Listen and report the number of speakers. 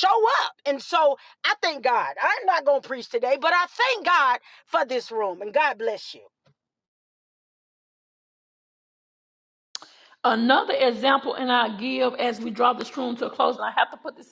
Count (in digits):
2